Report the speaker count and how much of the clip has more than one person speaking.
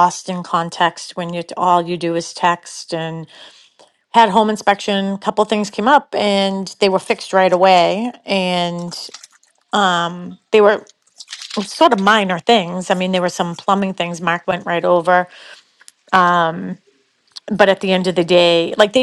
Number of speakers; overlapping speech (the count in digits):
1, no overlap